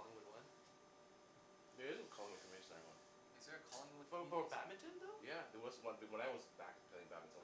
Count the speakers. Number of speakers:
3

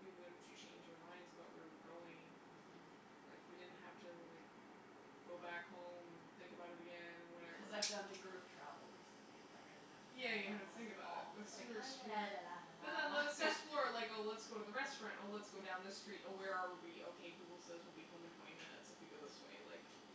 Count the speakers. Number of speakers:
2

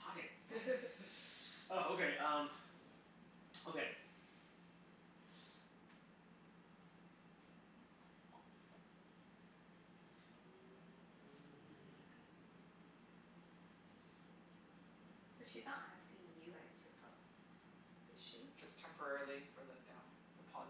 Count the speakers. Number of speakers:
3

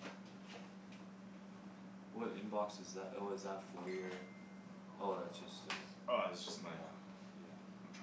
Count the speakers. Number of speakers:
2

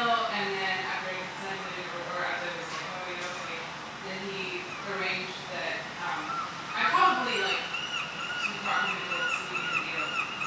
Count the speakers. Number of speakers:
1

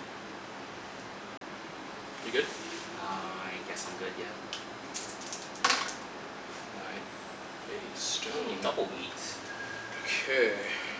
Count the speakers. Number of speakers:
2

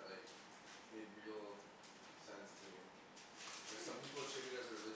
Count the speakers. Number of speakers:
1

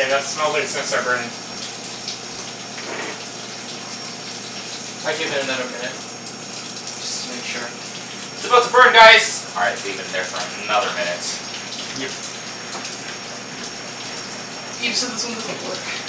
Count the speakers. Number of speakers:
4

